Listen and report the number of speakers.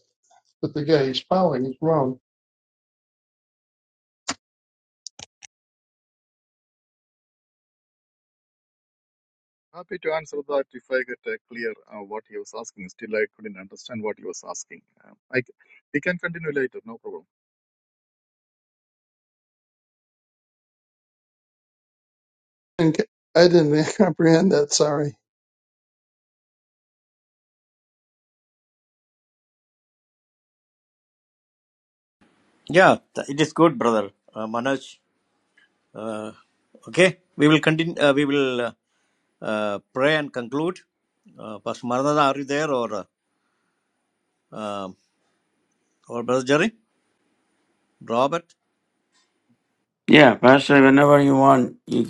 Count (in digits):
4